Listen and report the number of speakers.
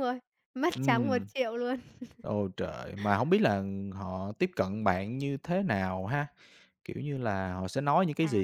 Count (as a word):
two